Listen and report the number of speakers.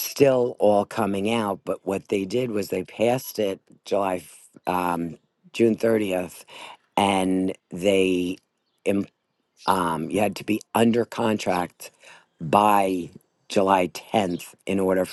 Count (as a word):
one